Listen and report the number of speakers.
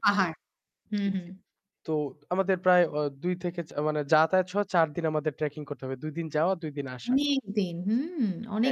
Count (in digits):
2